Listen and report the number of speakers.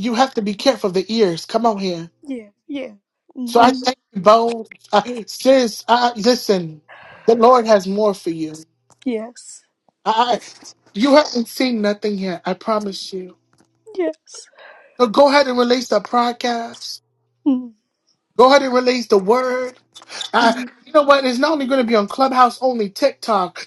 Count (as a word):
two